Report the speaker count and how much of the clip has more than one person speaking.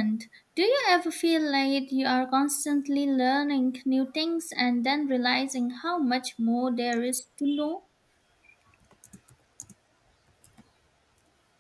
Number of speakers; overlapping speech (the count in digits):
1, no overlap